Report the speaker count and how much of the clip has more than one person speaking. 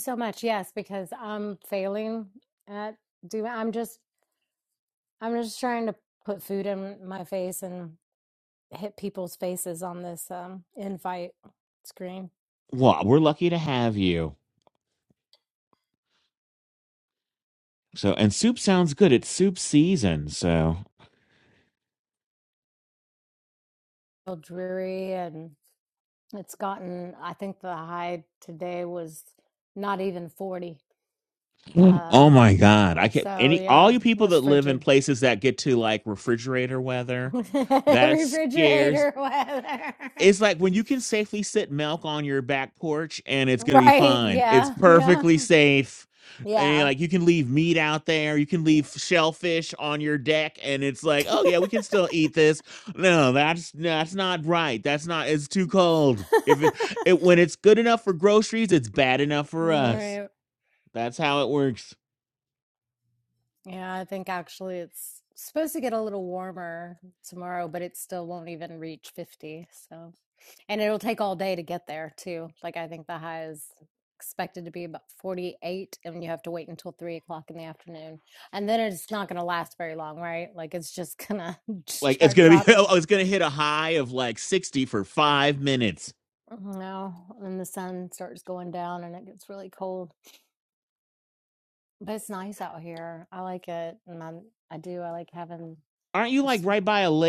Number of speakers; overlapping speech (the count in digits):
2, about 6%